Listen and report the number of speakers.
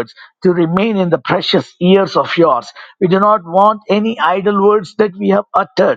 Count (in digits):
1